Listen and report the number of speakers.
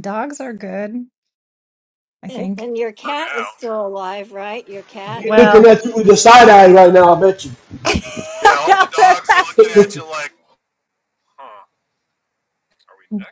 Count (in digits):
4